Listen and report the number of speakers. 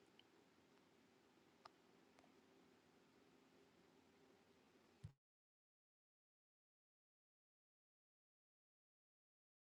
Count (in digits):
0